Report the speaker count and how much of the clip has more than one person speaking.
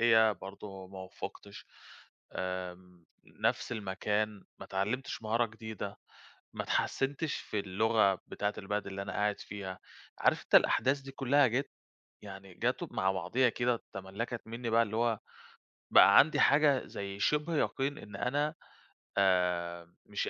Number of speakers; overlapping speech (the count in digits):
1, no overlap